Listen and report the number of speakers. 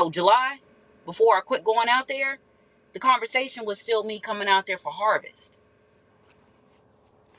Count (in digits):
1